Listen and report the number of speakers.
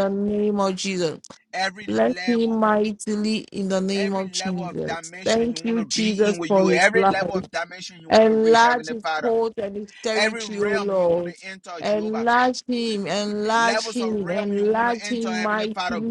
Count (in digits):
2